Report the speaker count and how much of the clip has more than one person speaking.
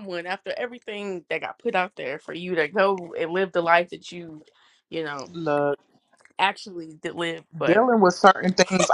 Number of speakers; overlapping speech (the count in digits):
2, about 2%